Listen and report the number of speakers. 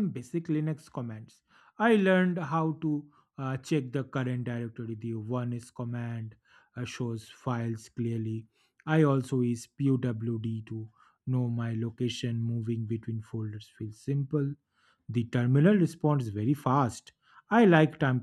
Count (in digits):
1